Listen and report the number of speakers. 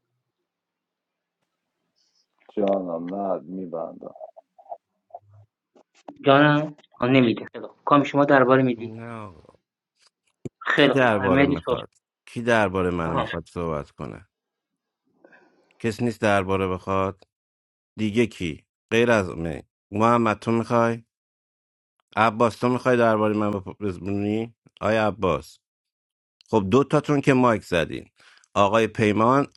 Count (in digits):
3